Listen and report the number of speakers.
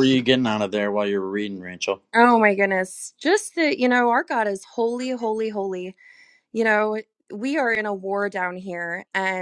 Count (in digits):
2